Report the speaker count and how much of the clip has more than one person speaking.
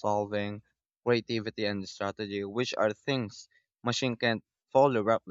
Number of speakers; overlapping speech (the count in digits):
1, no overlap